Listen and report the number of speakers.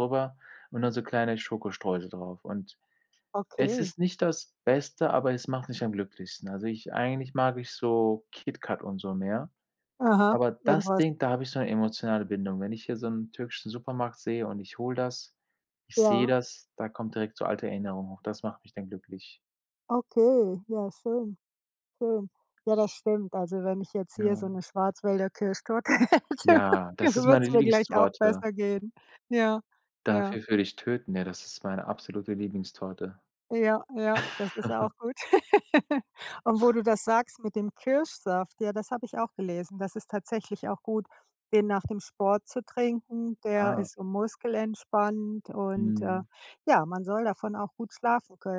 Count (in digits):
2